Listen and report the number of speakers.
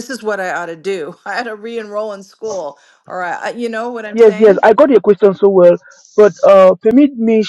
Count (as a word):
two